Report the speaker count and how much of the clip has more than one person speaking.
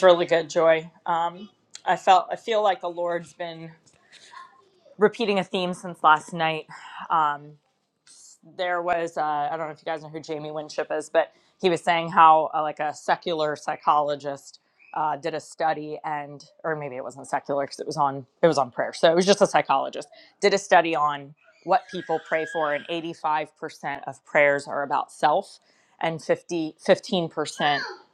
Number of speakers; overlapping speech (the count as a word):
one, no overlap